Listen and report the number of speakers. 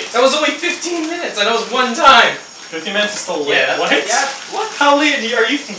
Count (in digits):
3